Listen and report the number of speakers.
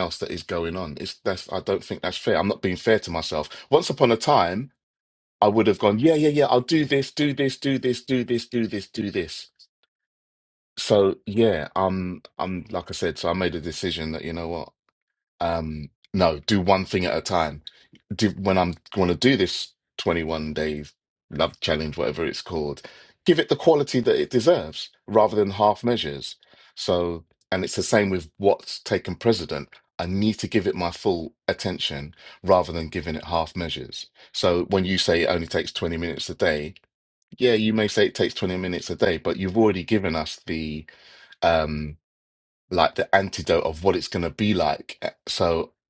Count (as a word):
one